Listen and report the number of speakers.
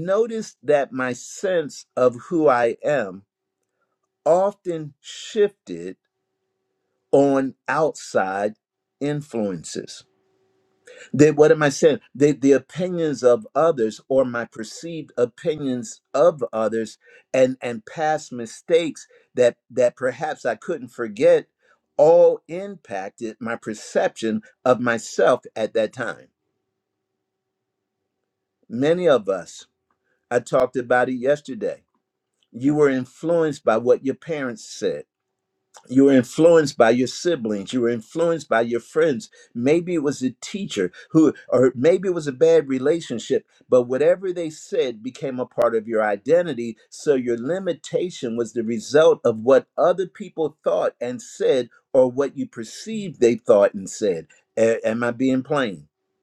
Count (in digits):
1